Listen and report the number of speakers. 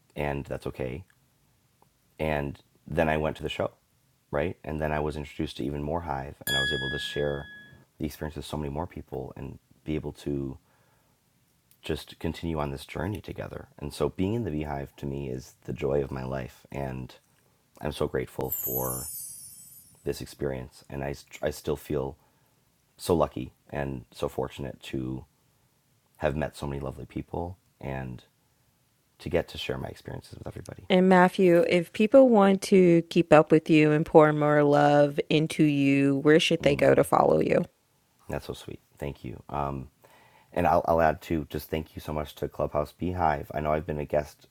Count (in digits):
2